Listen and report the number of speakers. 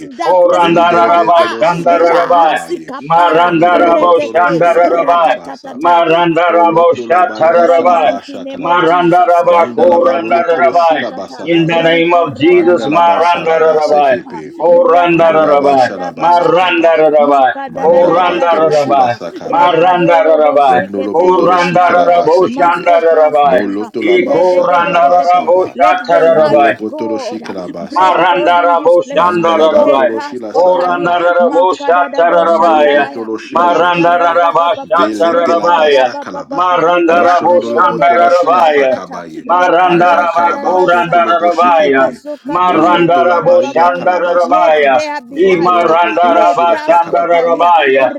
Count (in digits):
3